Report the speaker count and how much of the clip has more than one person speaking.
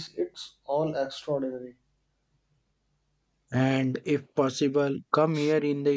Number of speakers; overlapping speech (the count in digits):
2, no overlap